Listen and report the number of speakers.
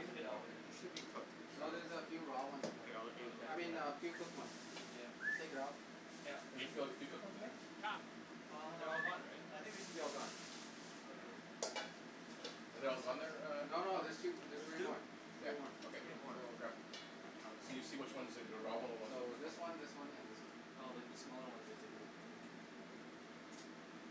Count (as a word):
four